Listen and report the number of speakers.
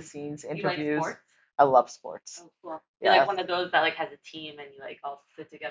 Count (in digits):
2